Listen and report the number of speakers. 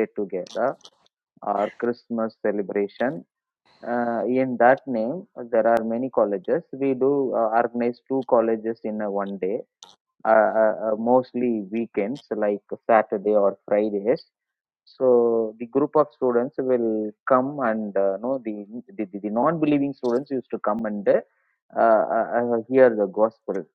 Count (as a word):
one